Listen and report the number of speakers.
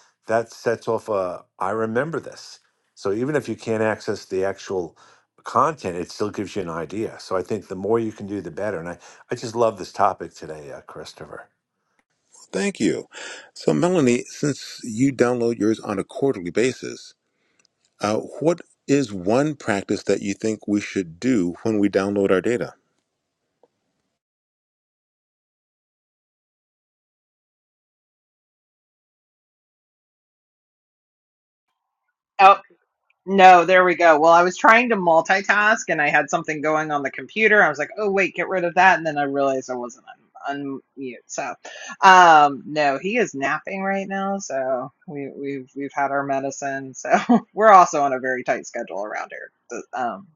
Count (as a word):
three